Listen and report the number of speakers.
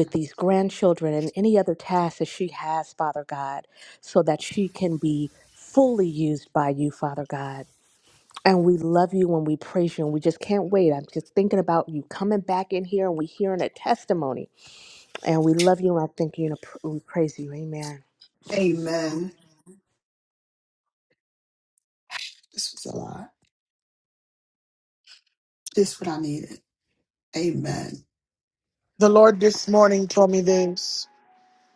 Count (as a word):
three